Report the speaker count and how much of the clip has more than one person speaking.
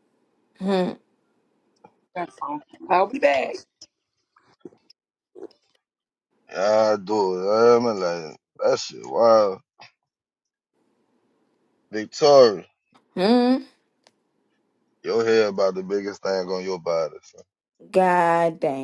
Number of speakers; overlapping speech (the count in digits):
3, no overlap